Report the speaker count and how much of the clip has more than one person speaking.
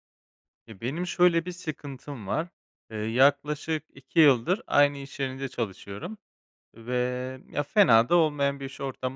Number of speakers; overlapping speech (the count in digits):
1, no overlap